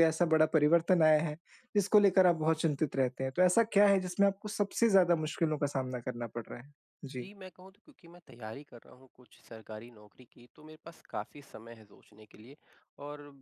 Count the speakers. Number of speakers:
2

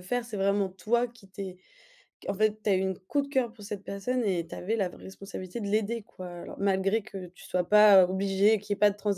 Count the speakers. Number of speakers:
1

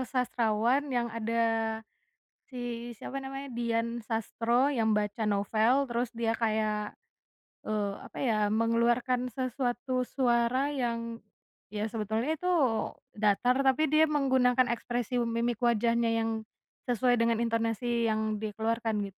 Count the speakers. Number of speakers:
1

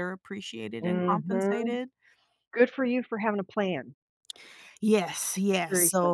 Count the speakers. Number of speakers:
2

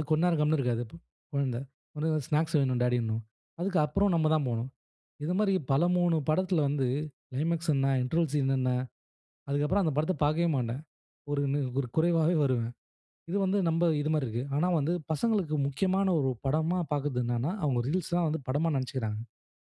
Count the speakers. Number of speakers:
1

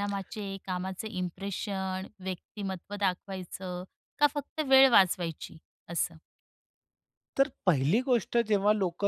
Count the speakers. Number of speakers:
2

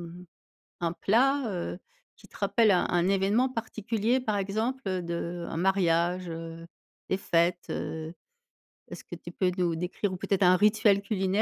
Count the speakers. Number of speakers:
1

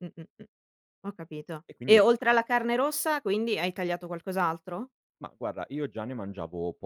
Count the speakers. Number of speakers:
2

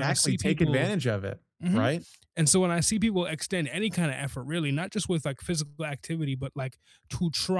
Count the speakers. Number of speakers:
2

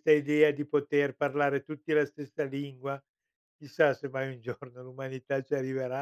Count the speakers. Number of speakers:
1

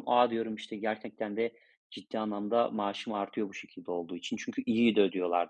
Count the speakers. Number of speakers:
1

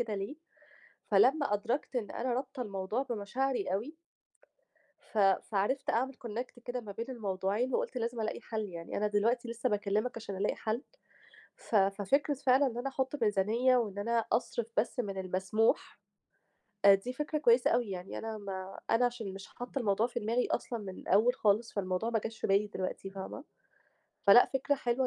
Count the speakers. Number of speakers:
1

